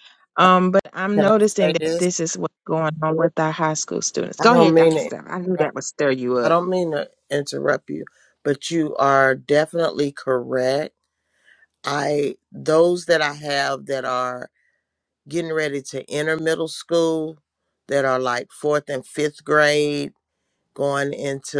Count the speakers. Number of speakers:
2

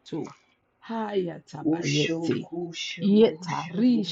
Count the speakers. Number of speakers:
2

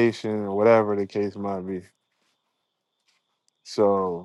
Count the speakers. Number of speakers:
1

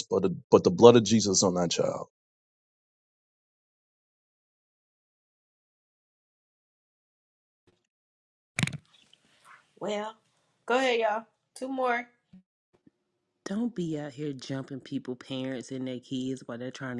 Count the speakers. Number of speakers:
3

